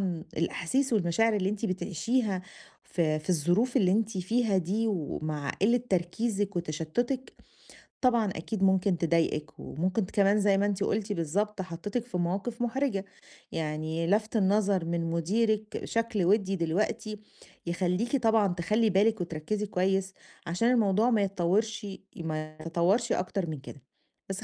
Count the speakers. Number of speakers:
1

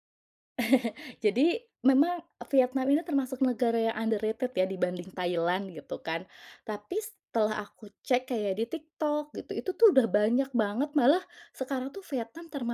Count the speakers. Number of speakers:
1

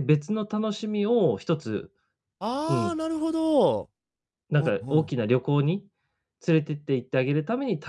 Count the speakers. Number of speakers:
2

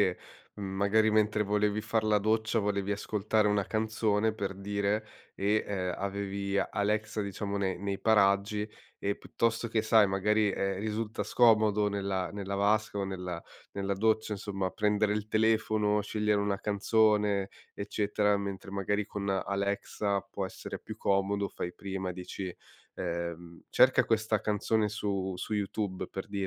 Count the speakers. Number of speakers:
1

